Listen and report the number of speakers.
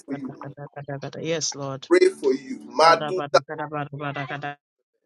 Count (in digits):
2